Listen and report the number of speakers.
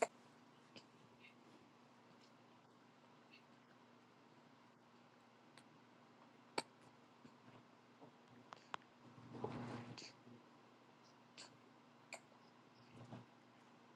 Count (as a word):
zero